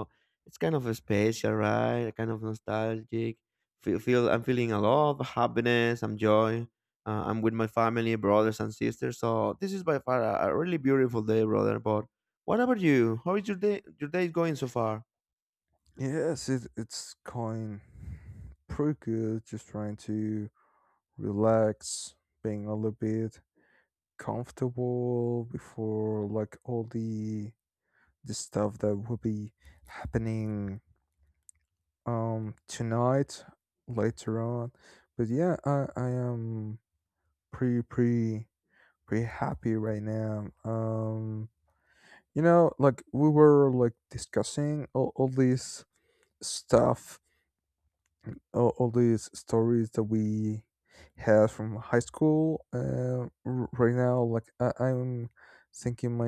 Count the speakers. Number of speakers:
two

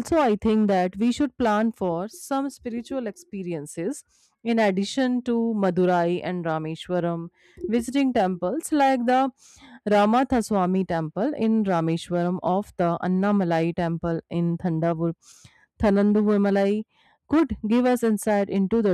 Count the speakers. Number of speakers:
one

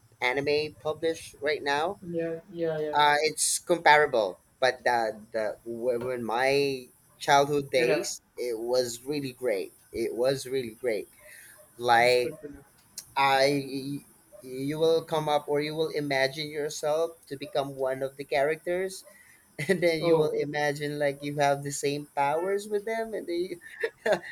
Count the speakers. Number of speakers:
two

